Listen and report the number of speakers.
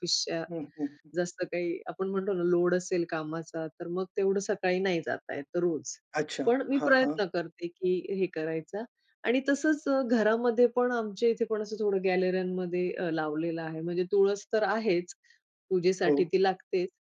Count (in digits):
2